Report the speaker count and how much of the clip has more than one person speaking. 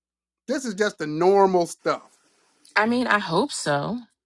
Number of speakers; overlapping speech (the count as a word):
two, no overlap